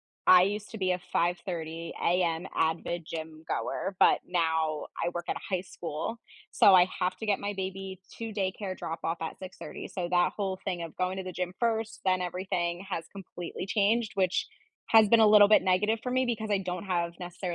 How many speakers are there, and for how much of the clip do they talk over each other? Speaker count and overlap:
1, no overlap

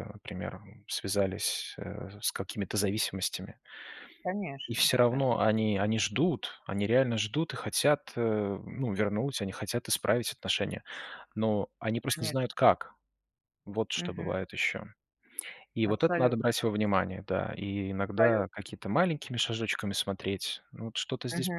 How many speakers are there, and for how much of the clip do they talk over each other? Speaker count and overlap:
2, about 11%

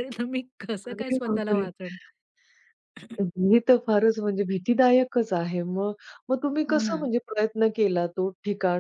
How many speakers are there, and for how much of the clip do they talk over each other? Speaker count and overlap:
2, about 14%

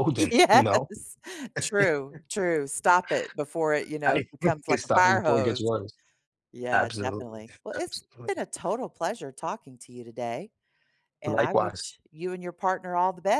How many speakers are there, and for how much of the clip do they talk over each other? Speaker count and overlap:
2, about 24%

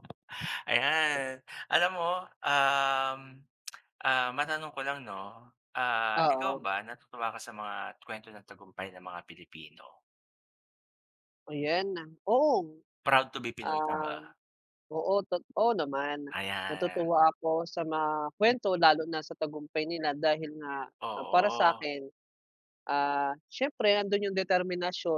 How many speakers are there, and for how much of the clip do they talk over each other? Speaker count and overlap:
2, about 8%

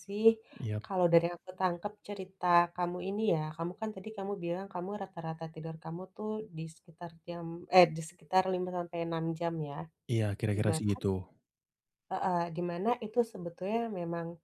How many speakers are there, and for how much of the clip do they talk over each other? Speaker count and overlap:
2, about 3%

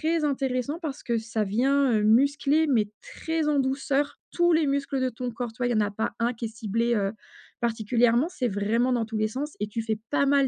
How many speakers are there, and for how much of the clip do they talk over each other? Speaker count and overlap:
1, no overlap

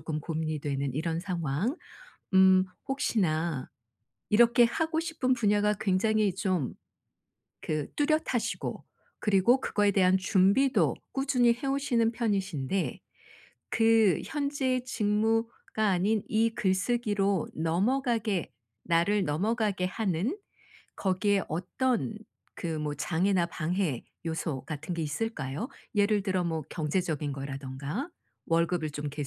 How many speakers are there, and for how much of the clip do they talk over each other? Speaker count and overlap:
1, no overlap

